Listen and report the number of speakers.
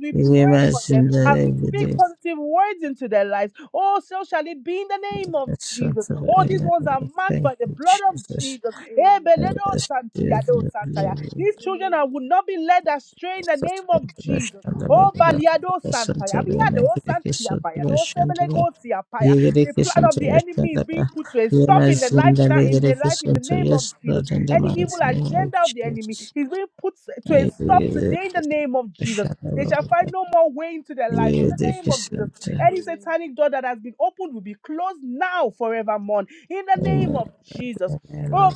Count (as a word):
two